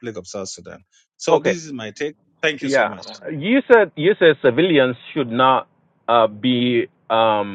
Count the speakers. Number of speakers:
2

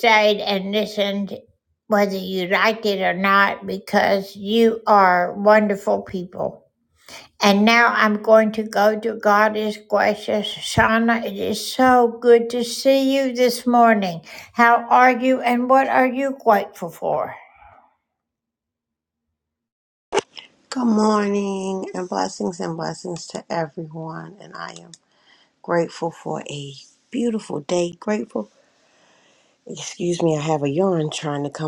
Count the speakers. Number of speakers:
2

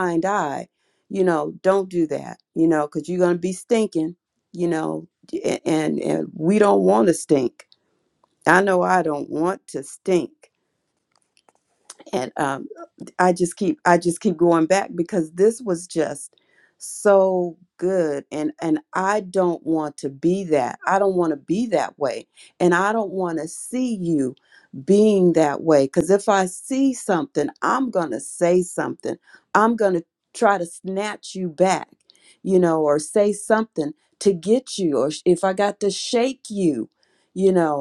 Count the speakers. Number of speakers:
1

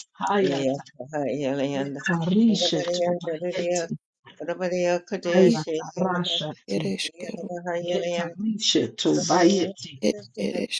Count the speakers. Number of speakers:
3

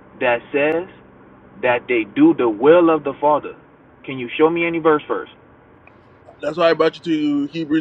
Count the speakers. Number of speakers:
2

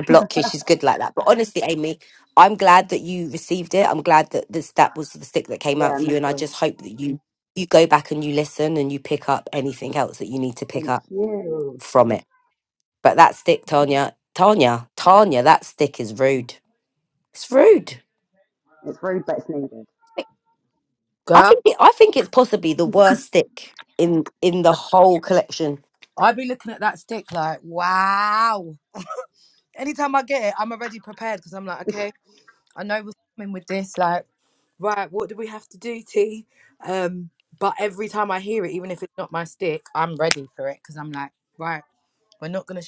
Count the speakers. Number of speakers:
3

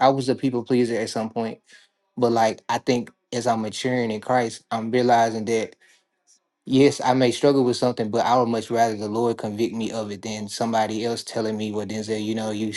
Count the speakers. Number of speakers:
1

